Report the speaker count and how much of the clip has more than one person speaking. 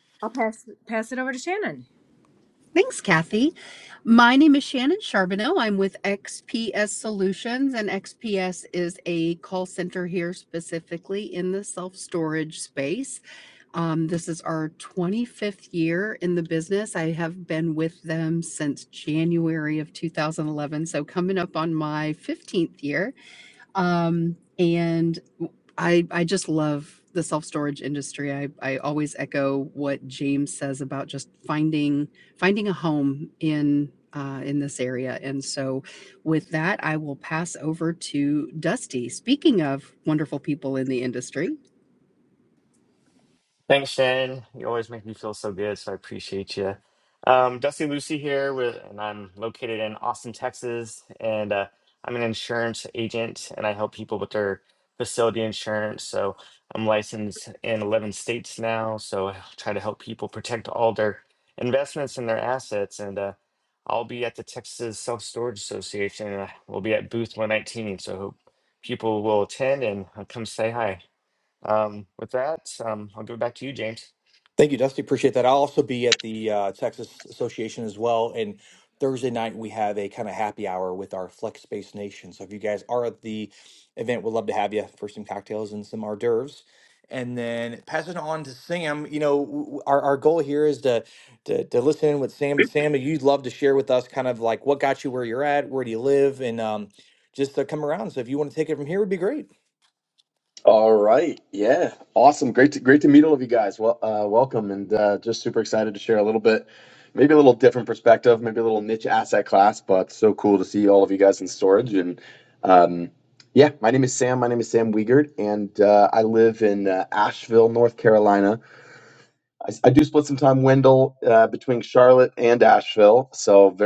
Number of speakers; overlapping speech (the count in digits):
5, no overlap